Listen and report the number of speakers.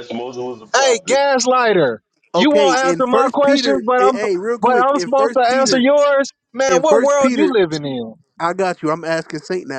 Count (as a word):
three